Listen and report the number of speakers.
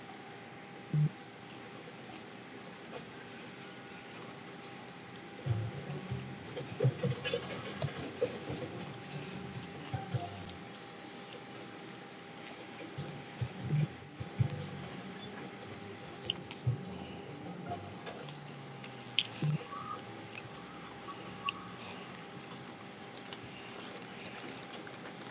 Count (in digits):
0